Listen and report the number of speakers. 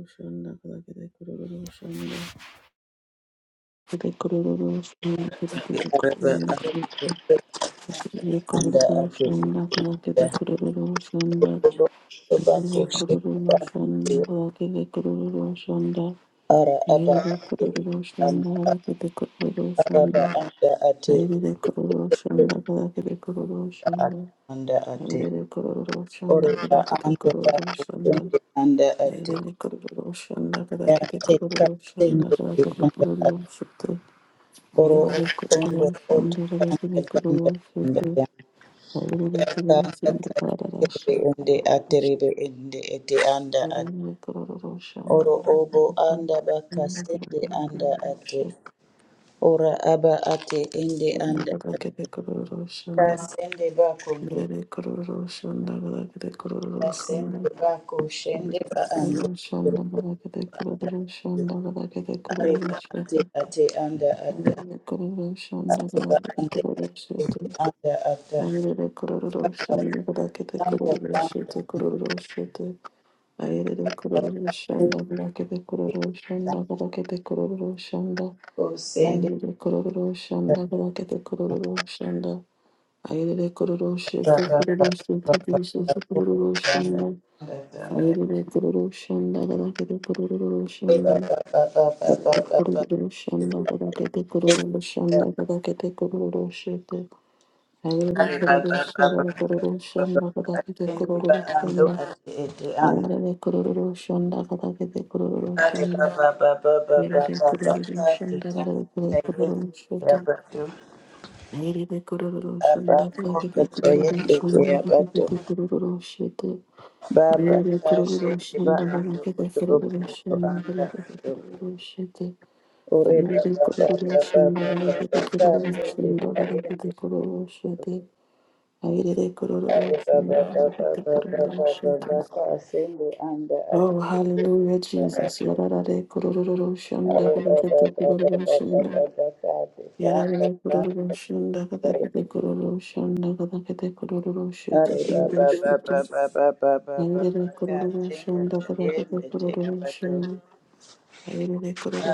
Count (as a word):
two